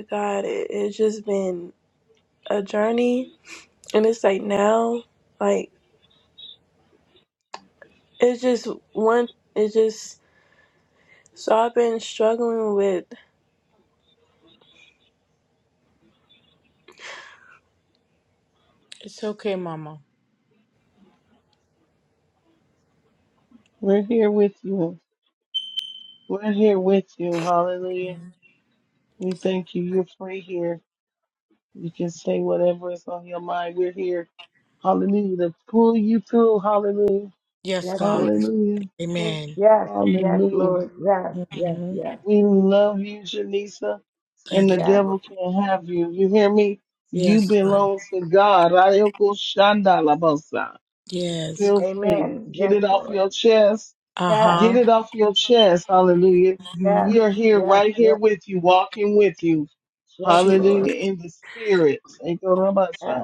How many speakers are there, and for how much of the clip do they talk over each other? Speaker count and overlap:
4, about 12%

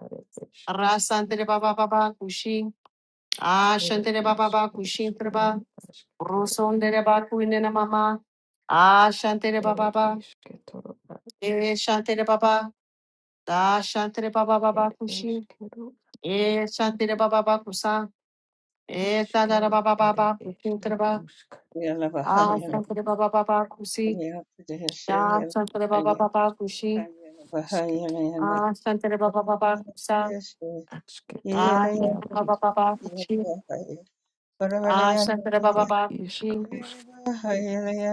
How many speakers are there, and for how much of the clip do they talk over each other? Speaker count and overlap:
3, about 31%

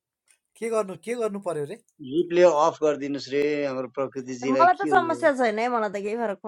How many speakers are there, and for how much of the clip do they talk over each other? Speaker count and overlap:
3, about 12%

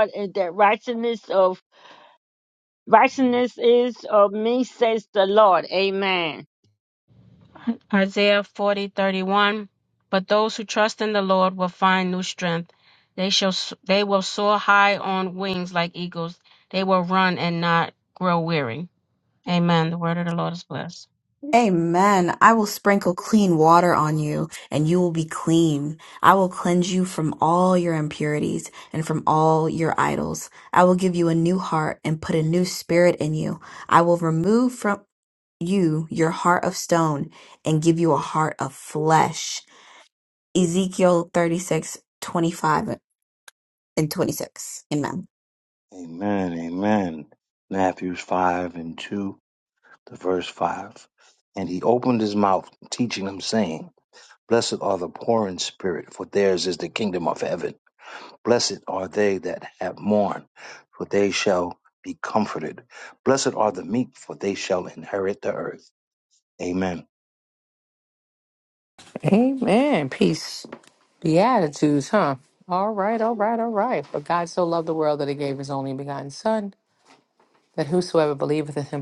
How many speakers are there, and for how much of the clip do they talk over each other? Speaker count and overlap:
5, no overlap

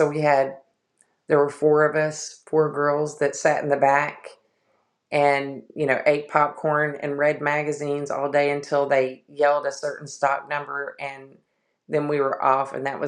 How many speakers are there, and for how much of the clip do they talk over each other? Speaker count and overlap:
1, no overlap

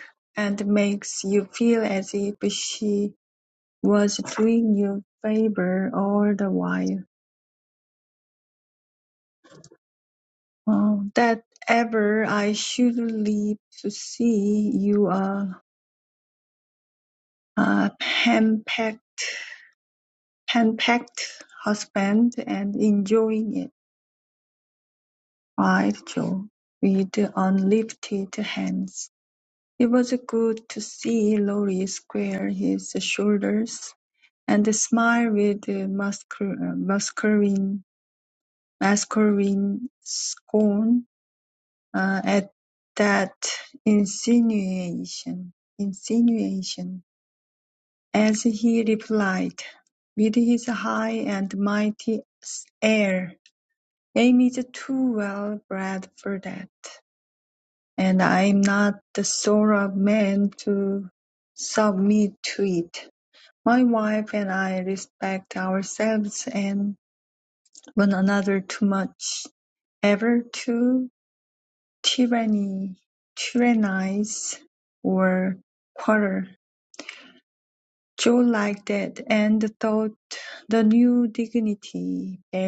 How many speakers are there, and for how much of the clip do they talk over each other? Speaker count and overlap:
1, no overlap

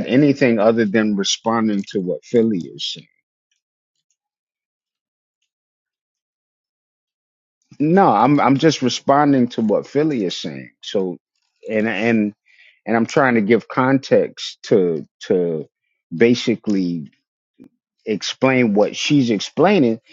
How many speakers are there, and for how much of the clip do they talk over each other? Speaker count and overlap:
1, no overlap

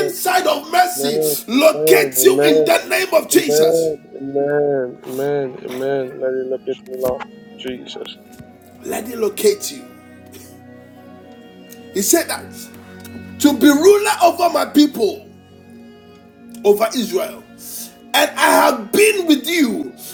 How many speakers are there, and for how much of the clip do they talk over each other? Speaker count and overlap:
2, about 9%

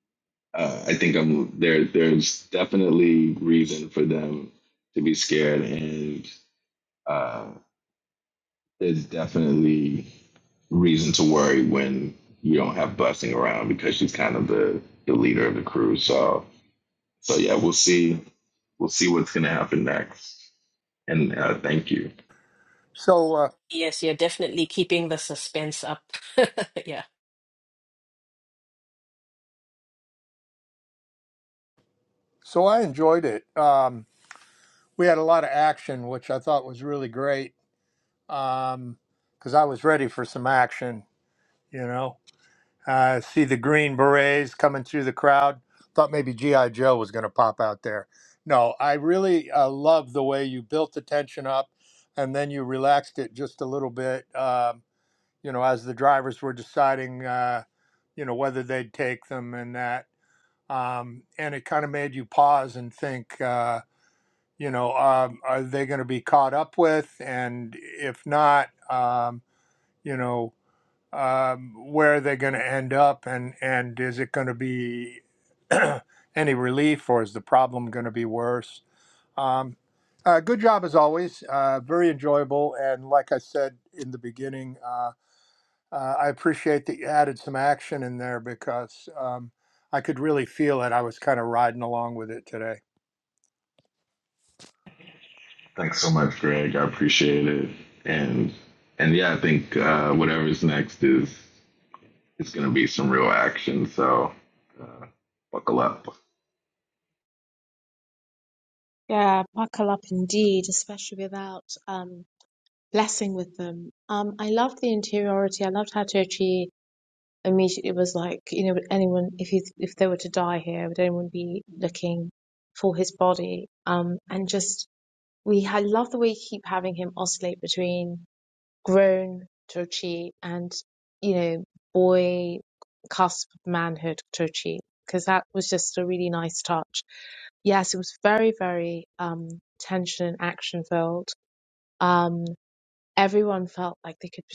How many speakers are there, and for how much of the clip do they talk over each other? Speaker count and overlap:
4, no overlap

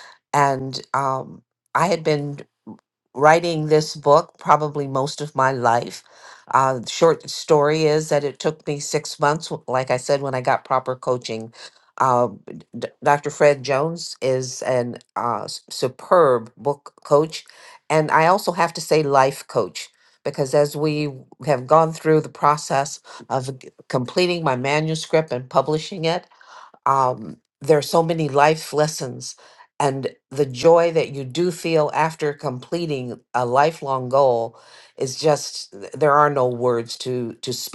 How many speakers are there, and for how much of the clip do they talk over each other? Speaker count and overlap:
1, no overlap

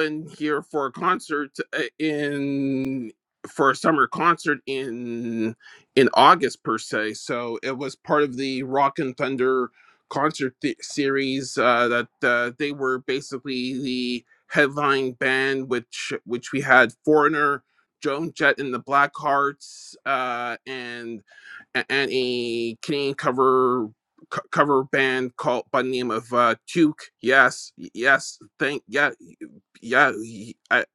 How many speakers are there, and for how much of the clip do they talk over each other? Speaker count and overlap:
1, no overlap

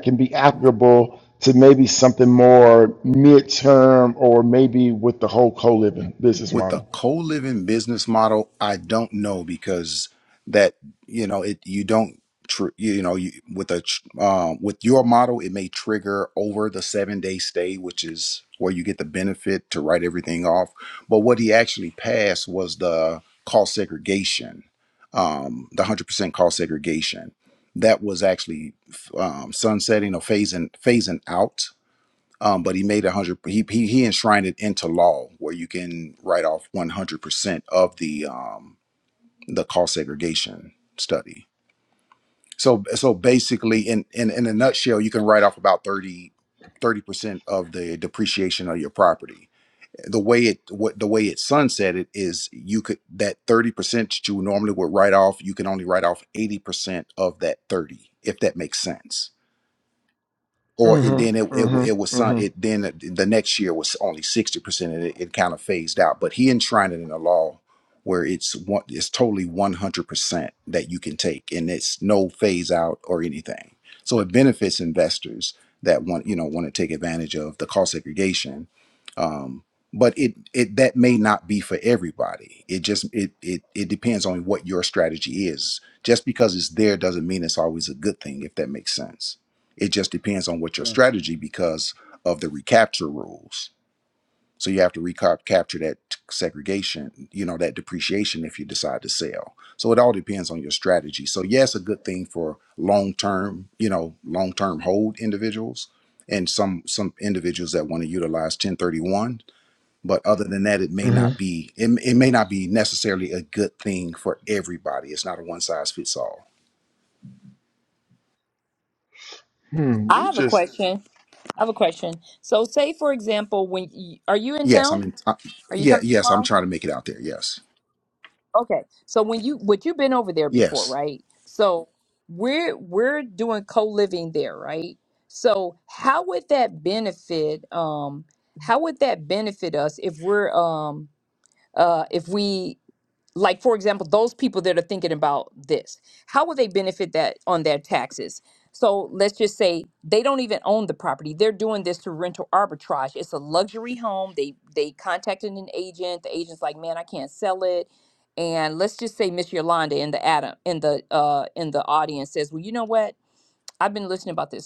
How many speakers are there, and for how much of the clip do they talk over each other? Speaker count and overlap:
3, about 3%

